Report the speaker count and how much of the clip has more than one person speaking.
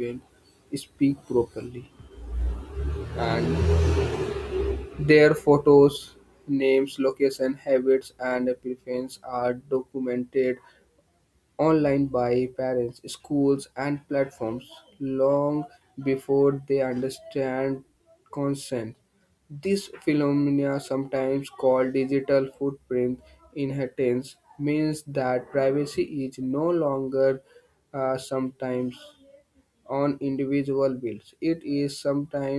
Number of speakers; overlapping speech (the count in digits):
1, no overlap